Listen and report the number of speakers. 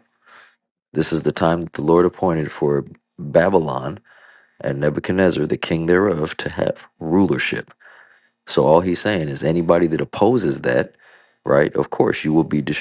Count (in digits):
1